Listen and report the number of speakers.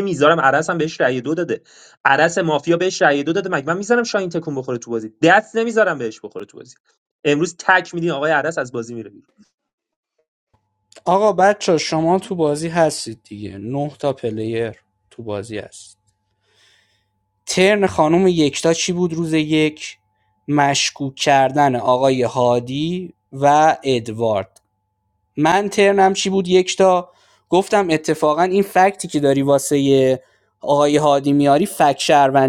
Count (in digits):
2